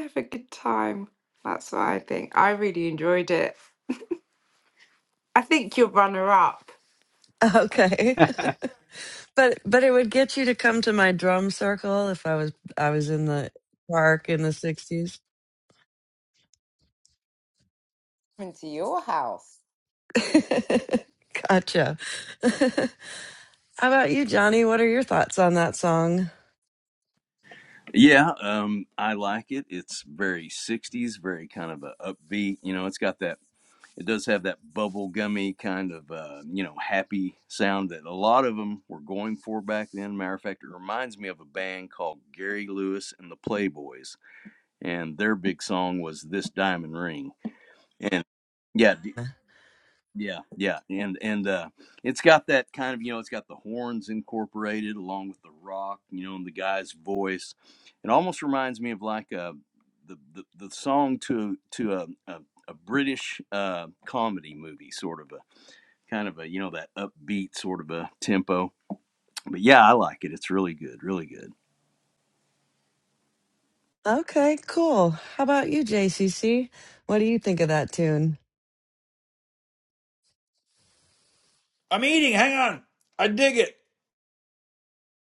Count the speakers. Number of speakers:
four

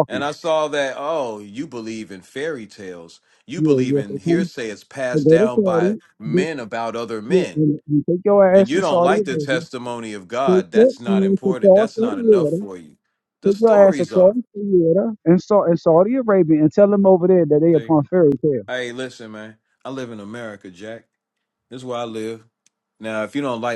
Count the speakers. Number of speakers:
two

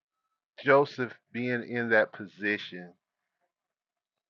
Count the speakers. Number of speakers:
one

